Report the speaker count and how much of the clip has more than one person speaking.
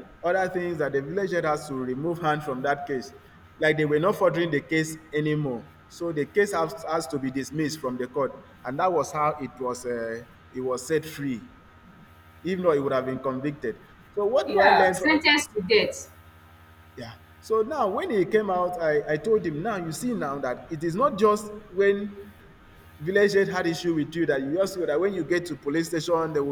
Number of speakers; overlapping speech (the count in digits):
2, about 3%